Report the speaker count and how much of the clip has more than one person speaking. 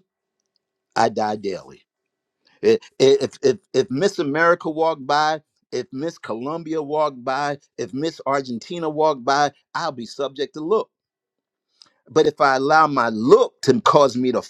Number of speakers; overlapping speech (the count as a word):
one, no overlap